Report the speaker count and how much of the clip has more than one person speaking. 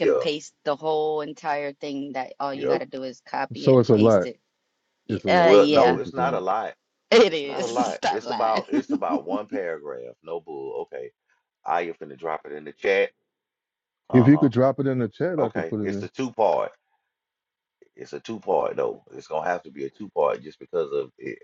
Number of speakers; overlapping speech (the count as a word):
three, about 24%